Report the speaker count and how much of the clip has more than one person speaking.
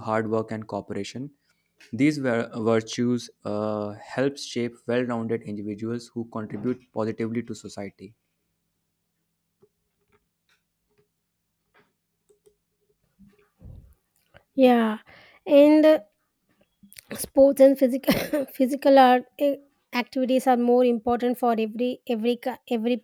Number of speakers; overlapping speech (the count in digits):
2, no overlap